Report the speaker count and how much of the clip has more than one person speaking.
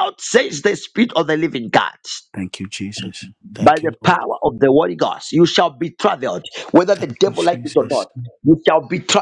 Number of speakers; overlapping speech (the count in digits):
2, about 19%